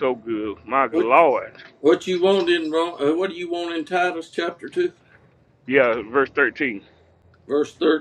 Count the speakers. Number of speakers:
two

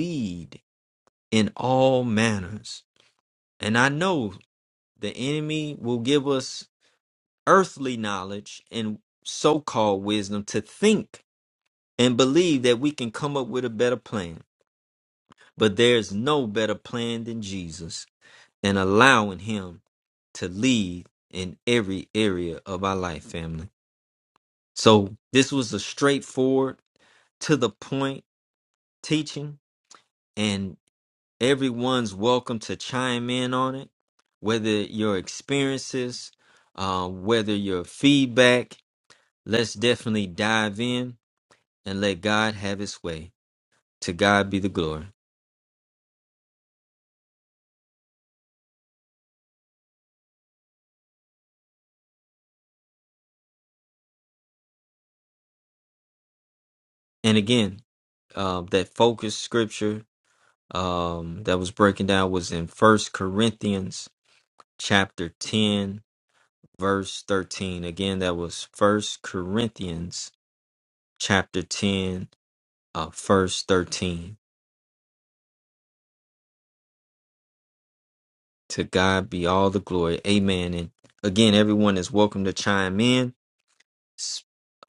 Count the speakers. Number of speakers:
one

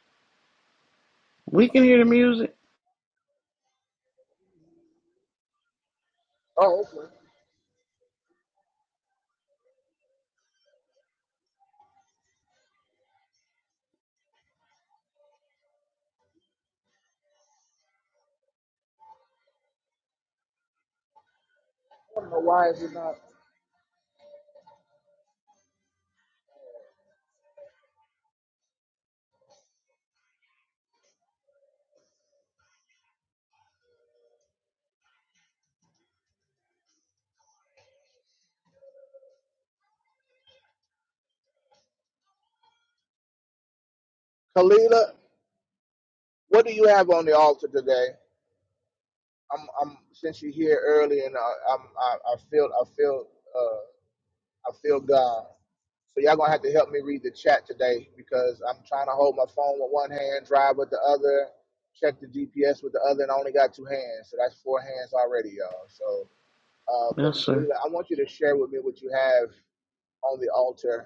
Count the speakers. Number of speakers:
two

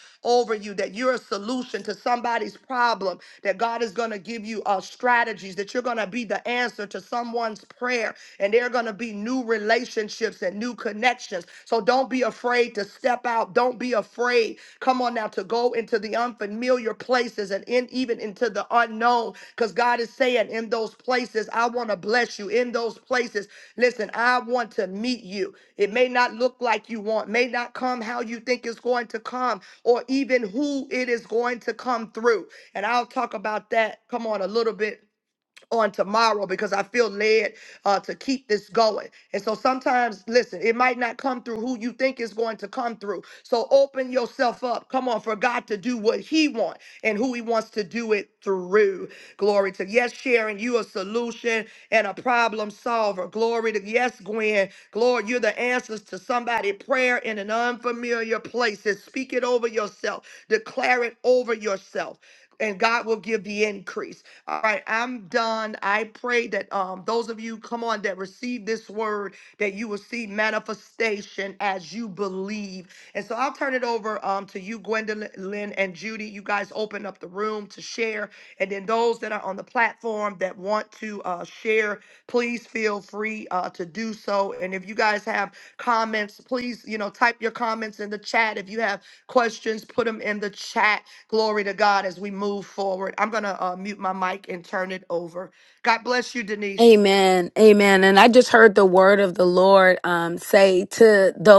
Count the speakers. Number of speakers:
two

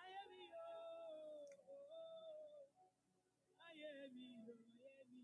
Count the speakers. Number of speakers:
zero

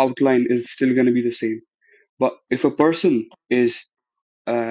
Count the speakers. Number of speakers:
one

